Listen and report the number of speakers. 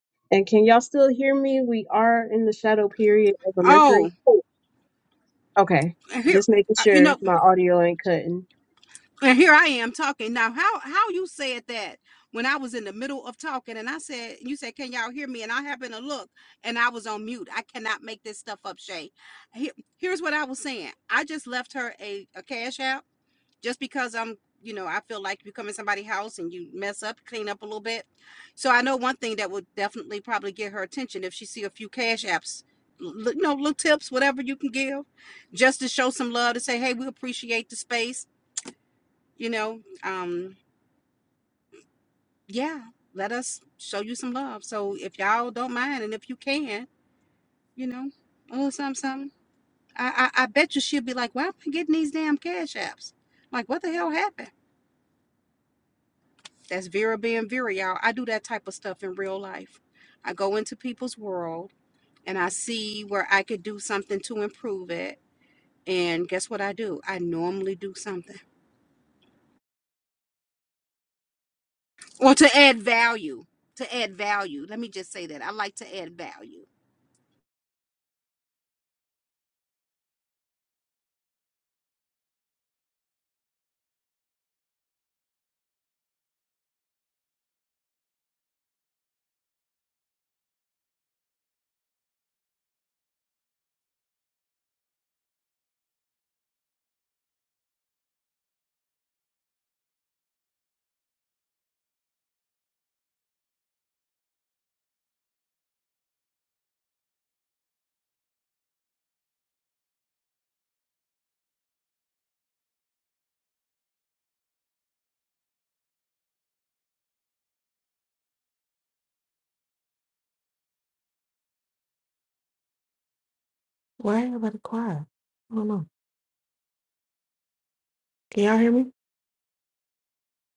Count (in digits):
3